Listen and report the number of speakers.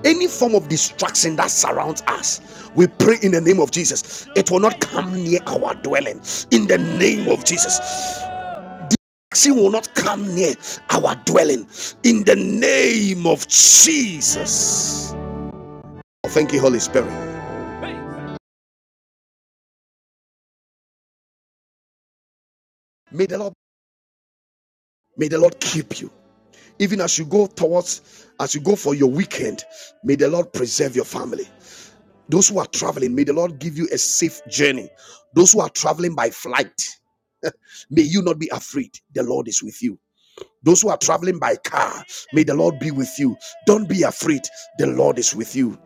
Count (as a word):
one